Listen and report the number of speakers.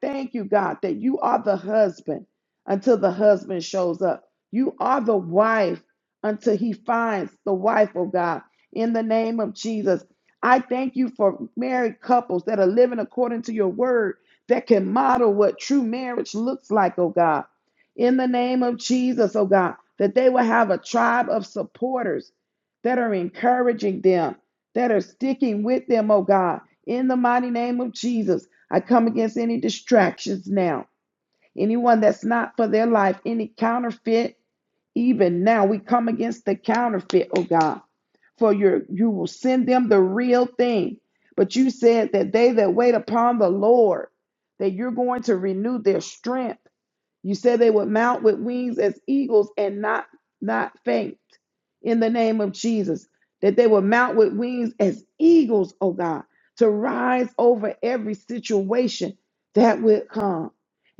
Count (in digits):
1